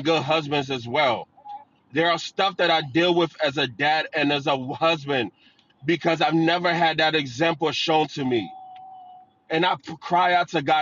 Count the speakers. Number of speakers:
one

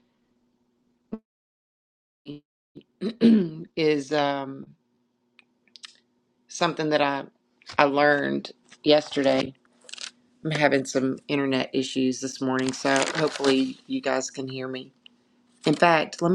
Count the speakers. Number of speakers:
one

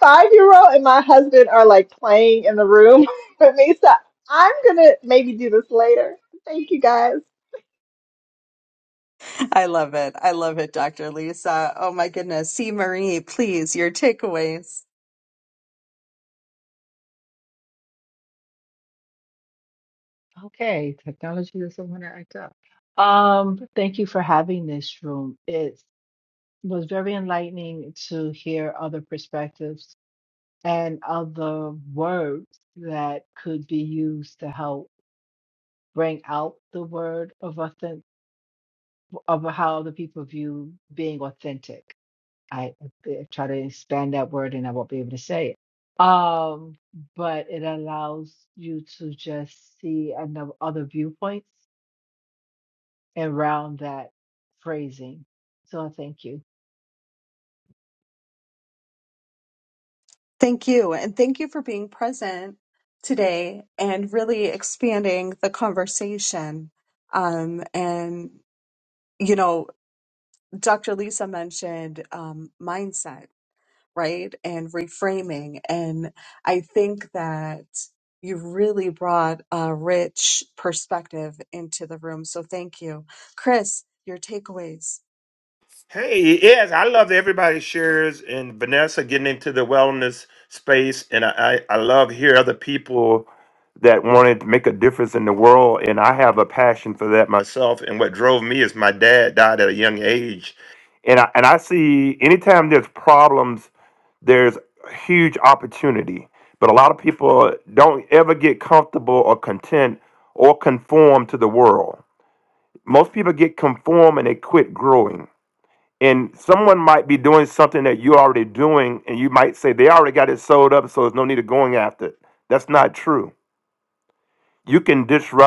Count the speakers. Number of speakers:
four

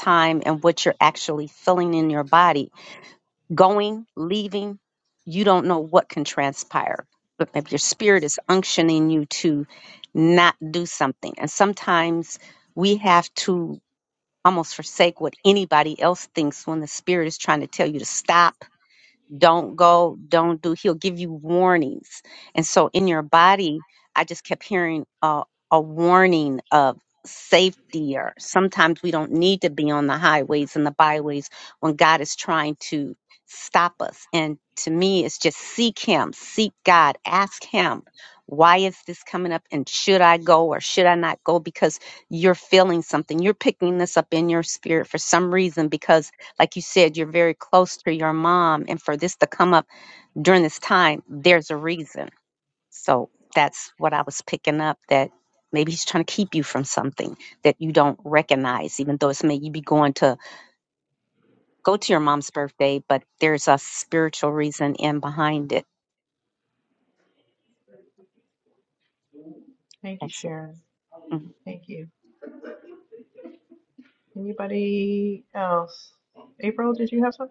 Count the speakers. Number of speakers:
two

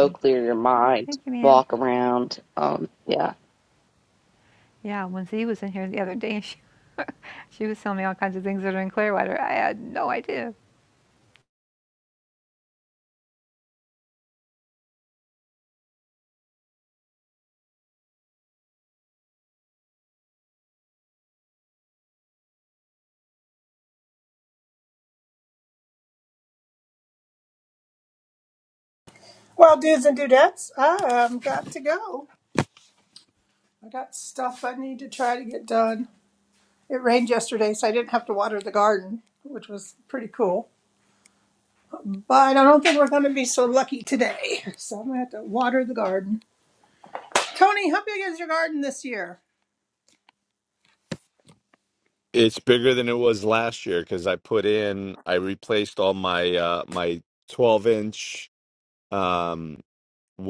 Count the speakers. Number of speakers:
four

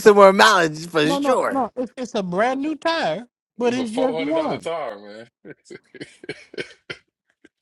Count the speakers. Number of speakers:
three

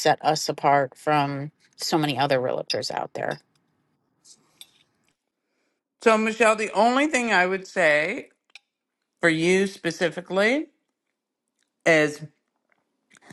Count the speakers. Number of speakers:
two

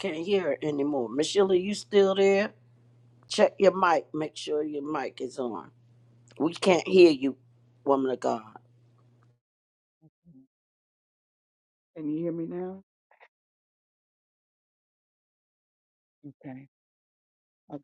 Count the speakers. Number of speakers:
two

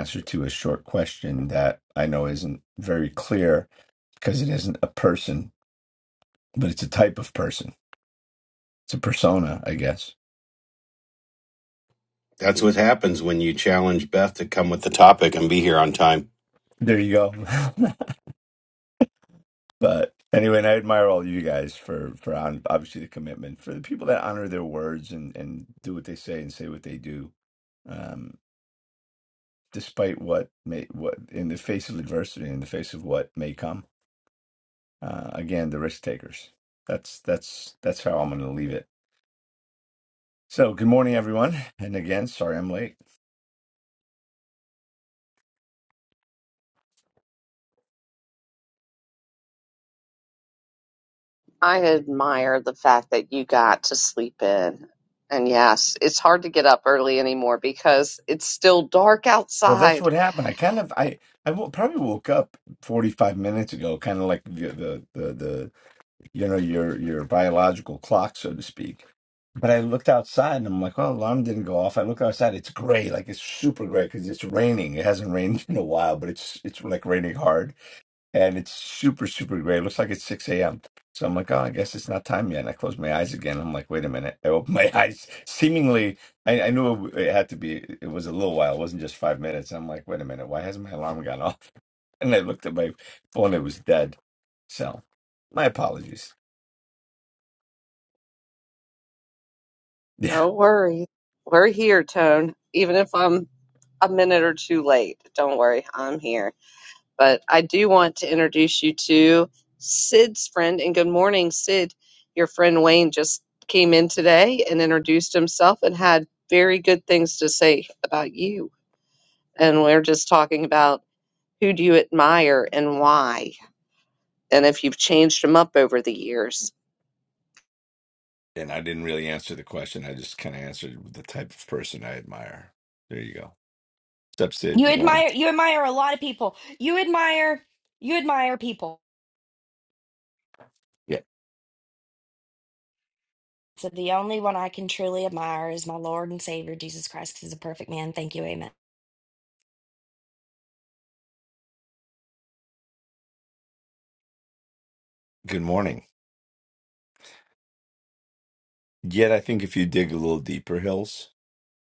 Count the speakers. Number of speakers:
four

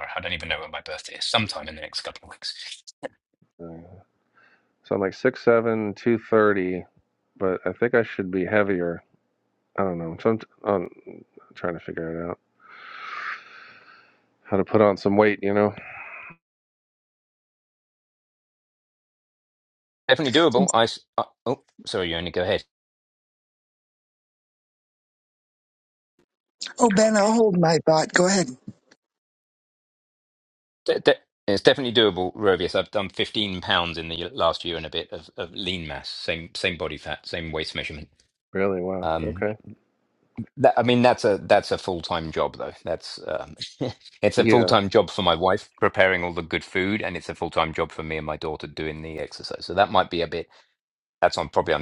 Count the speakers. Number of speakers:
three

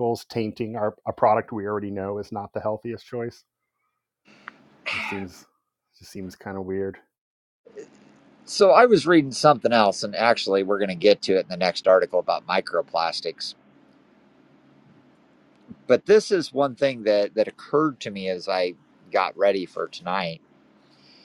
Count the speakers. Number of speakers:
two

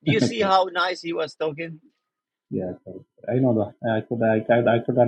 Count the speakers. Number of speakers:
two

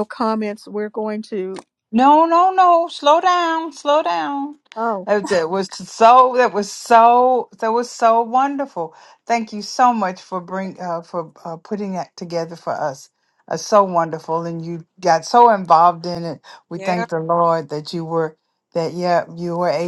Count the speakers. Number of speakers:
two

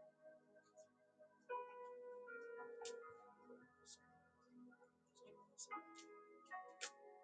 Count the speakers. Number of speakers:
zero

